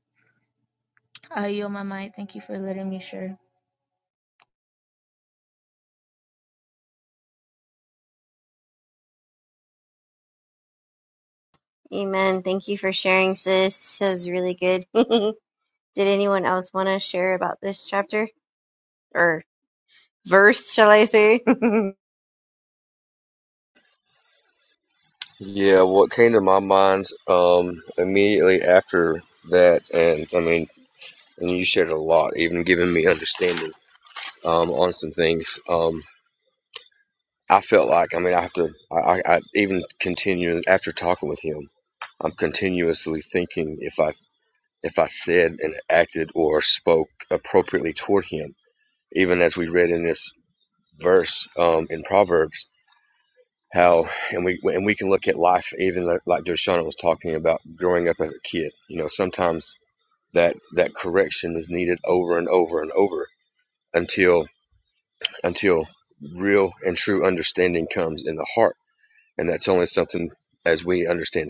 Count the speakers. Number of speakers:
three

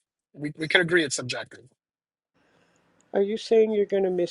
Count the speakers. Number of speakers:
two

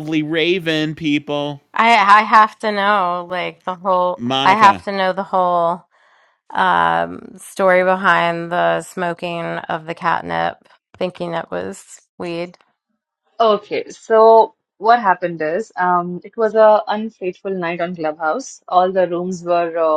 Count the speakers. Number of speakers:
three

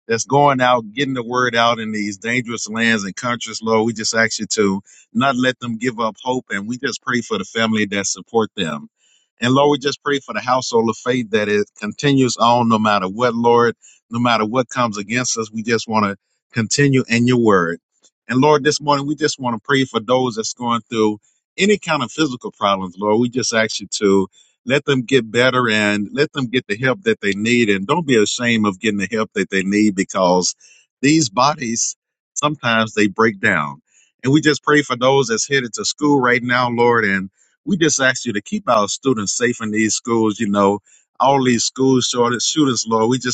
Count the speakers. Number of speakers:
one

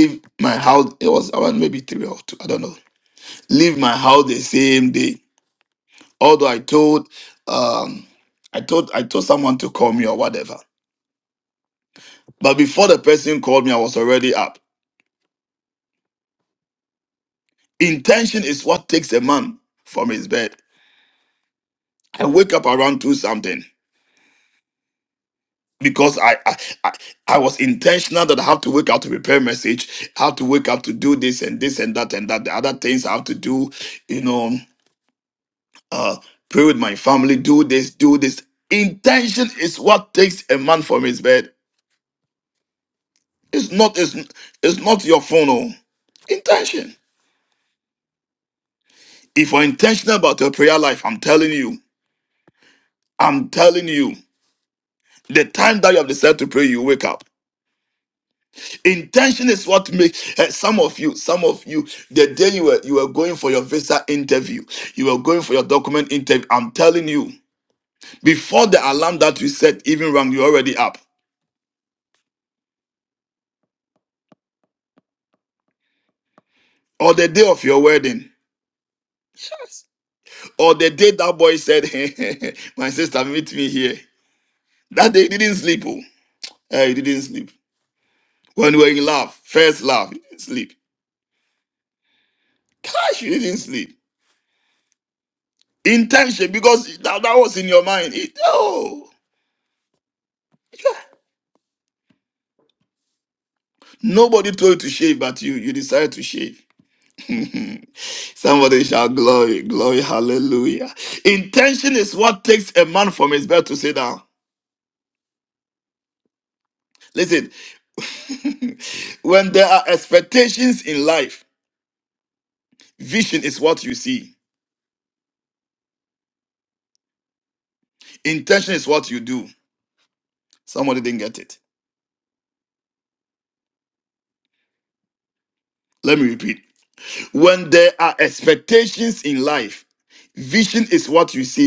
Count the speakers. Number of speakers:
one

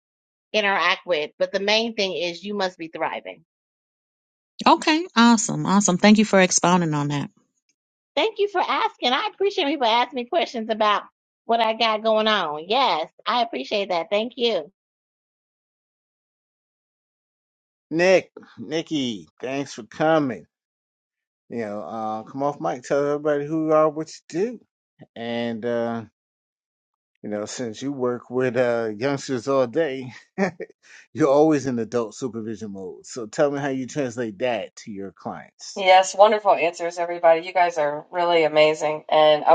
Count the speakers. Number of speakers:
four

